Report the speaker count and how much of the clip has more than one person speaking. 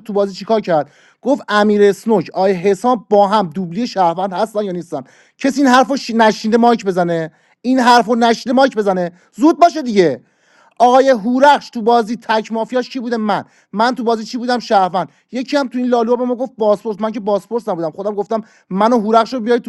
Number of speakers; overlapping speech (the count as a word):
one, no overlap